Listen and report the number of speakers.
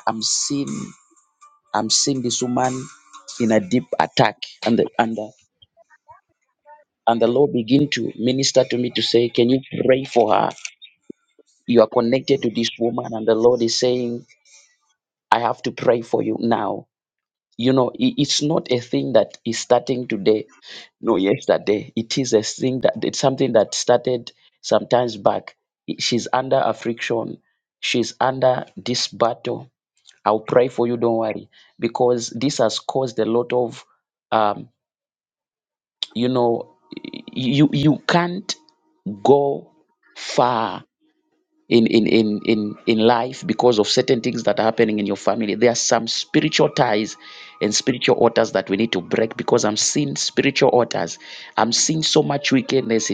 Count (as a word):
one